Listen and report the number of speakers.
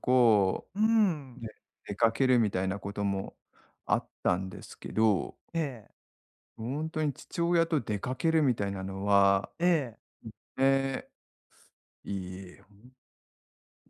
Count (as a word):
two